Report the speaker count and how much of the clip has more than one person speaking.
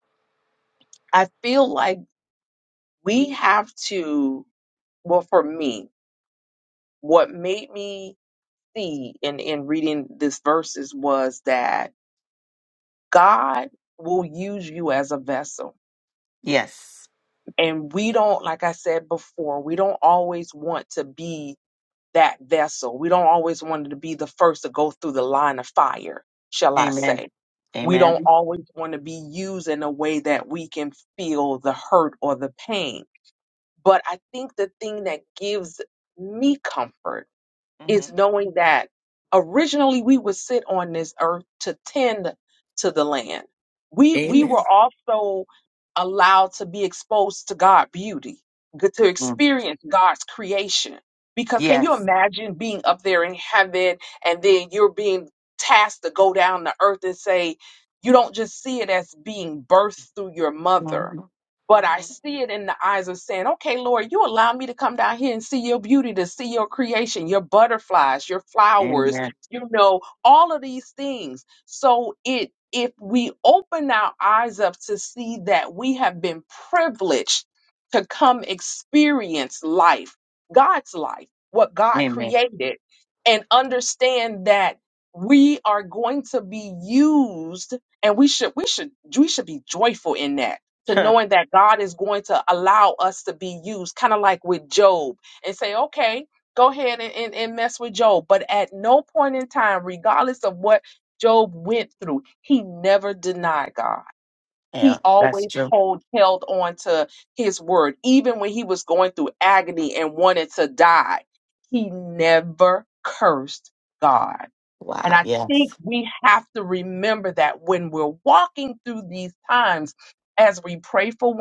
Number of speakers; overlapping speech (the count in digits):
2, about 4%